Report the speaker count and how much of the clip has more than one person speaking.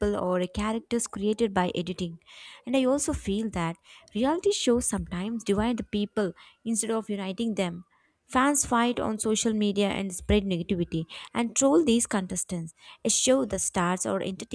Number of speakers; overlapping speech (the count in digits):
1, no overlap